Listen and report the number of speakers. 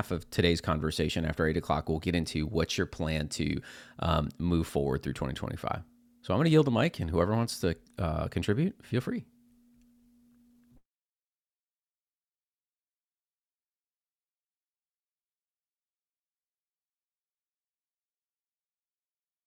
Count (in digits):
1